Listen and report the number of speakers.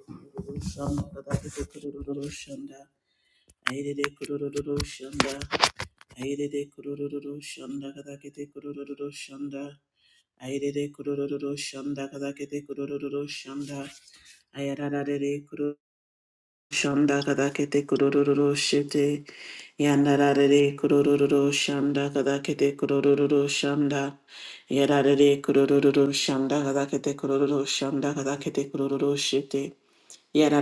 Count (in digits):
1